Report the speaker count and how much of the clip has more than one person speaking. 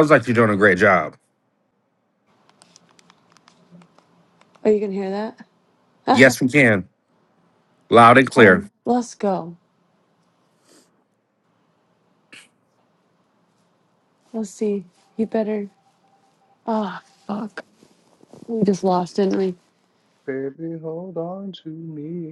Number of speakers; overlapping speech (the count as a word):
three, about 2%